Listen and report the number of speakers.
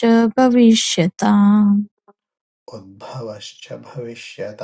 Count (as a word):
two